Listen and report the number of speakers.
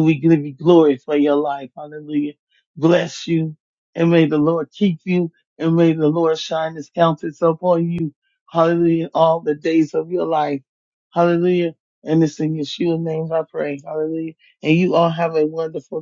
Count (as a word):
one